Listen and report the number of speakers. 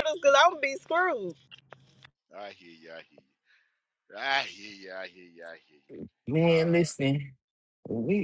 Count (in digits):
3